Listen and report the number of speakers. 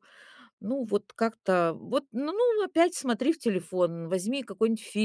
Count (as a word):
one